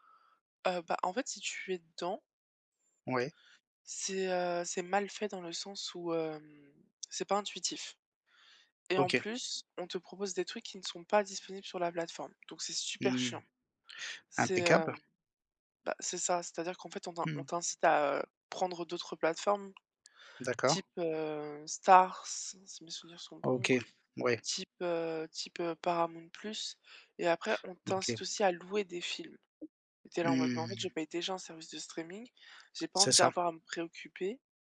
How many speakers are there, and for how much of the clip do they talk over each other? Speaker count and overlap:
two, about 9%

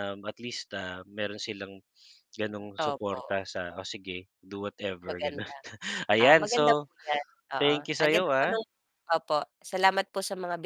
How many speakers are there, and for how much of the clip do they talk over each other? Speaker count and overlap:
two, about 25%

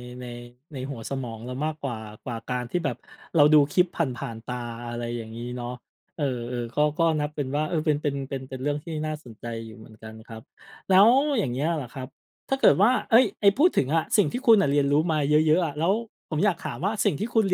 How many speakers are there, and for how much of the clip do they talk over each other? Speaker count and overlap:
one, no overlap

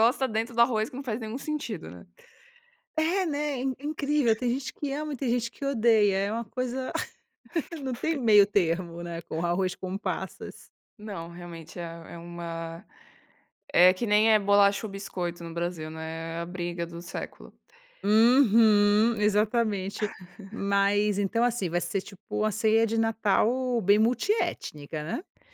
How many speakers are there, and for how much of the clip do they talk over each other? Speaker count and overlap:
two, no overlap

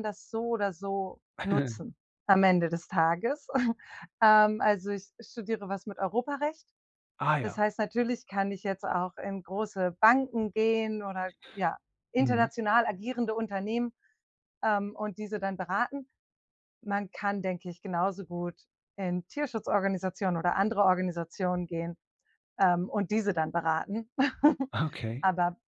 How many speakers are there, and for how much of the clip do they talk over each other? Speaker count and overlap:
two, about 2%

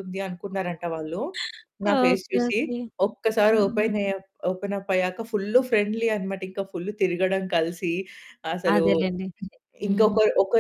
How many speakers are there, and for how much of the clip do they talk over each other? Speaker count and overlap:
two, about 16%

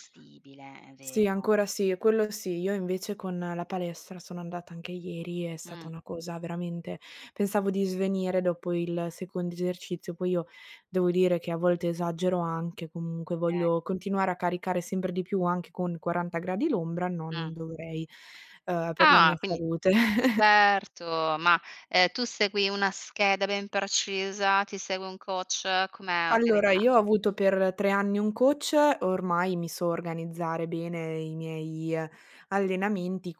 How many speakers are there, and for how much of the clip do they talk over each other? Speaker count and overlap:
two, about 7%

